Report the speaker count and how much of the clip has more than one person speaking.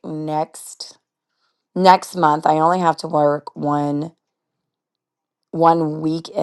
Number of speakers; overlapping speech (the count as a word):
one, no overlap